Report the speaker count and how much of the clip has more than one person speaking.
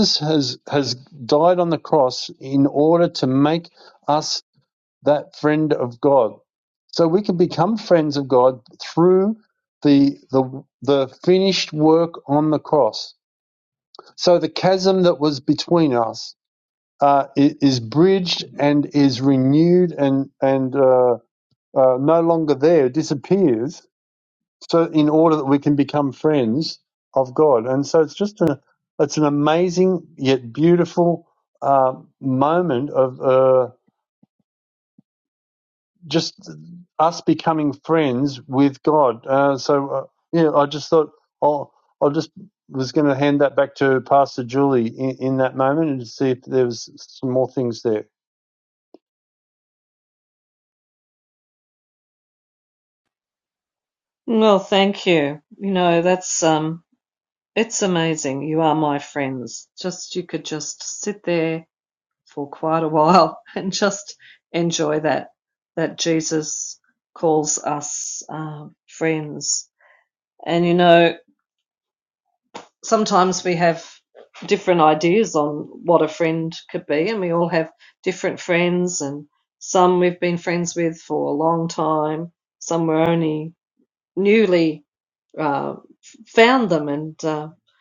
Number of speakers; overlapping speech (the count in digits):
2, no overlap